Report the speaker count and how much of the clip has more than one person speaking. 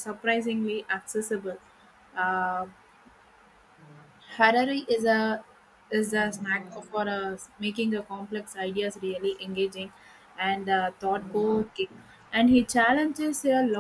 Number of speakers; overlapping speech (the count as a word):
one, no overlap